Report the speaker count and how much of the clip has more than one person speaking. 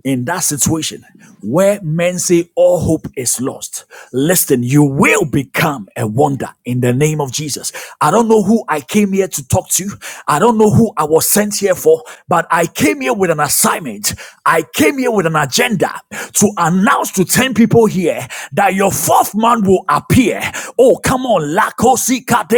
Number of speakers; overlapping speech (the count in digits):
1, no overlap